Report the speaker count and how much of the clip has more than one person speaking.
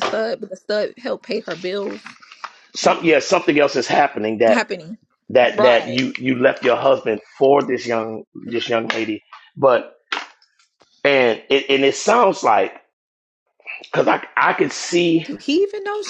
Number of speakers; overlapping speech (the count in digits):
2, about 4%